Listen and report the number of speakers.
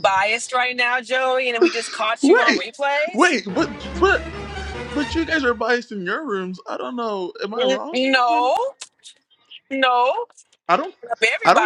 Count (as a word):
two